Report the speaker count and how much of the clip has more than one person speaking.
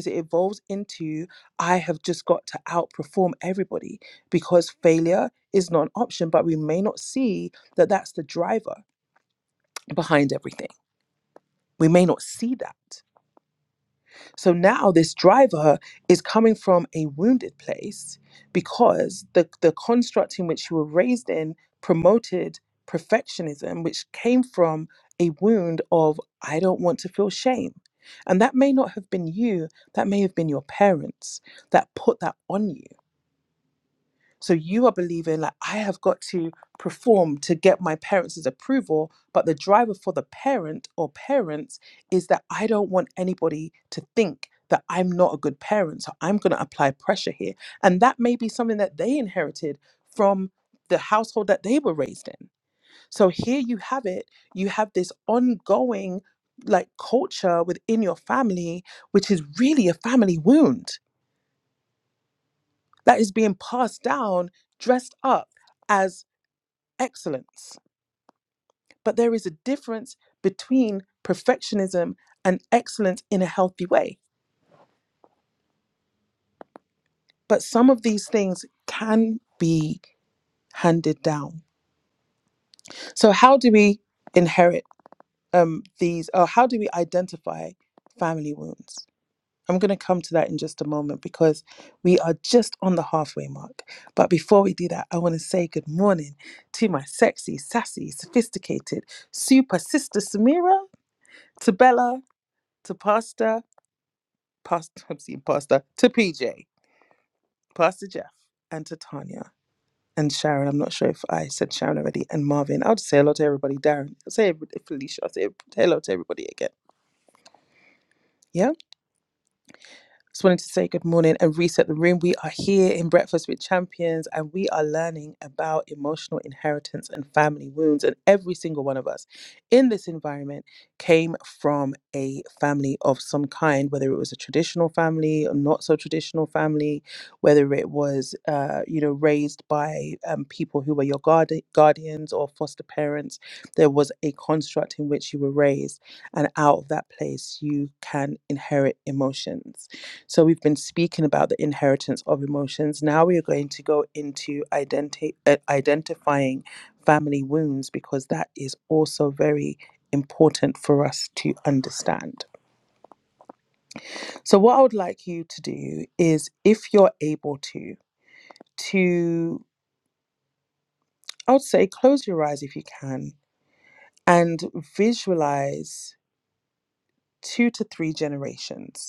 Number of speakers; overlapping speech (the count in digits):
1, no overlap